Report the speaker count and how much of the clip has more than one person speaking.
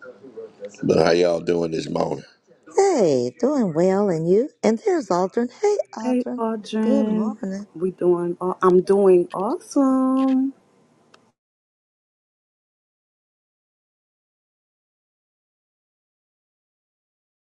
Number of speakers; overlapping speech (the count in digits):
3, about 5%